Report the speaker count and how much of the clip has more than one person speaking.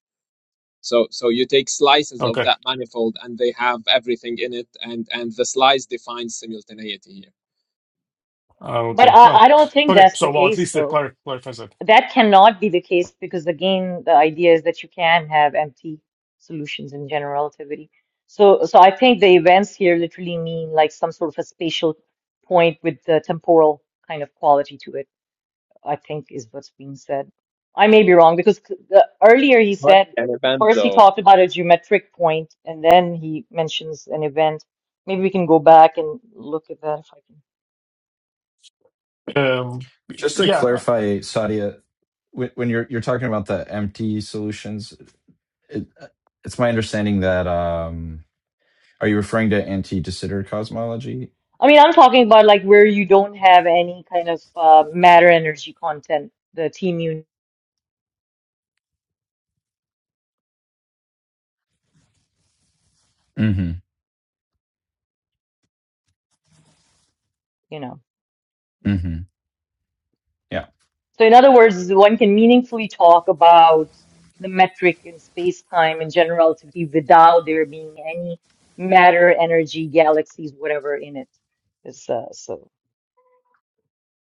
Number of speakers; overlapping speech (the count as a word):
four, about 4%